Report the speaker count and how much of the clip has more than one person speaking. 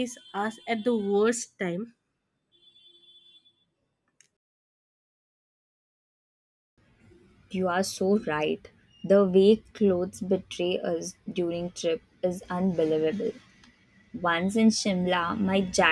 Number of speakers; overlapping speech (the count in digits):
2, no overlap